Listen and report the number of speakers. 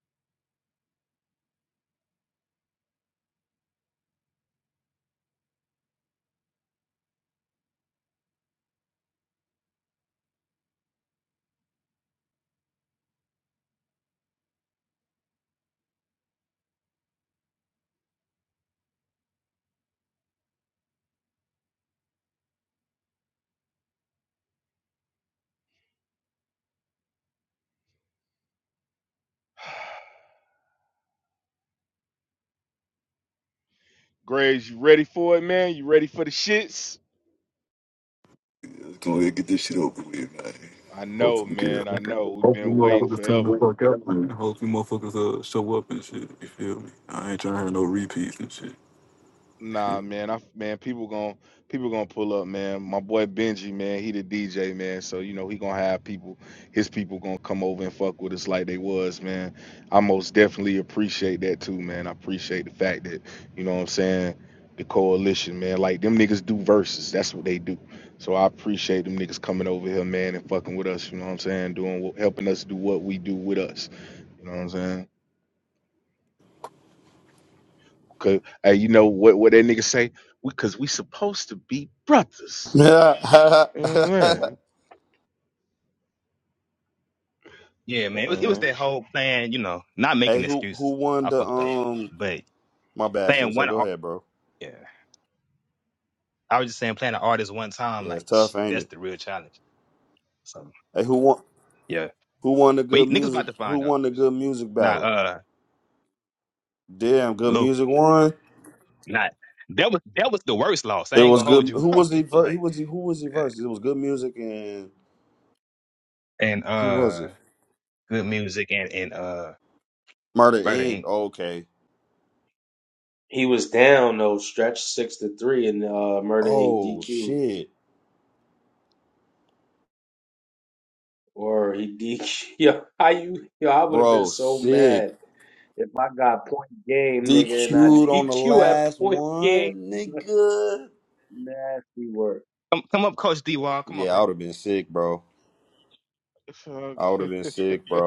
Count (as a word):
five